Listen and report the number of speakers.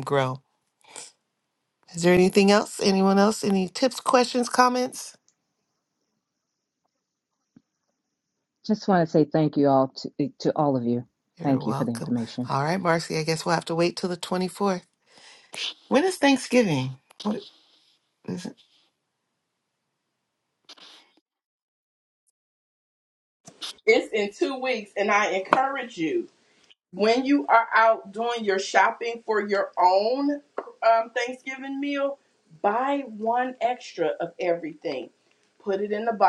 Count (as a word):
three